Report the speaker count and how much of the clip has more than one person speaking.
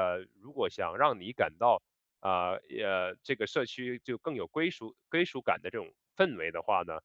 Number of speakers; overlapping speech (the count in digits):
1, no overlap